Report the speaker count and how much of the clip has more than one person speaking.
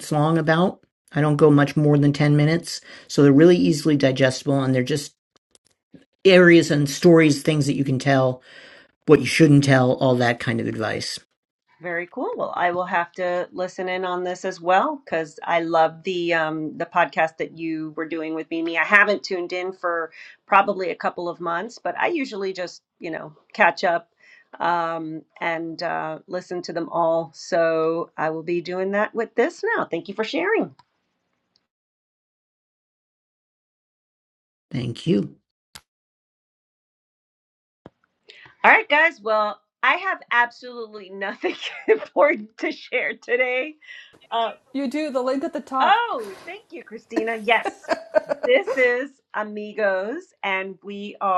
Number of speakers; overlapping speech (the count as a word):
three, about 1%